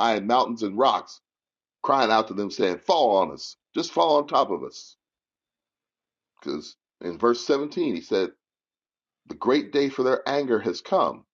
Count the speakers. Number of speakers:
one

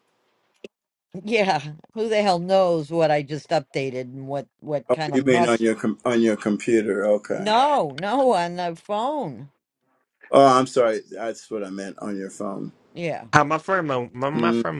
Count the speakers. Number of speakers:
three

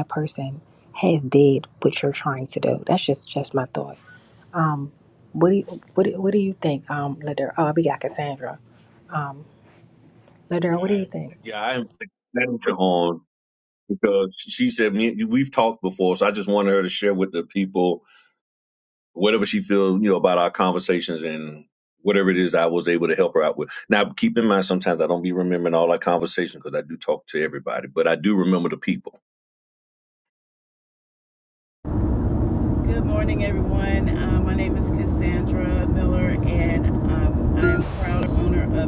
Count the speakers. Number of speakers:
three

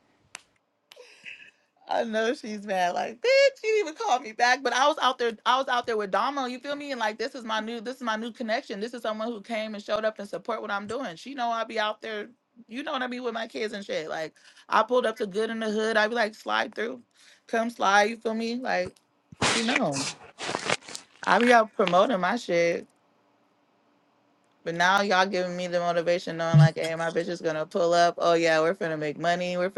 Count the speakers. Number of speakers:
one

